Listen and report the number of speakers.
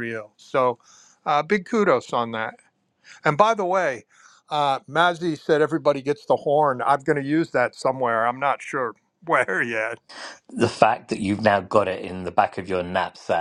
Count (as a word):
two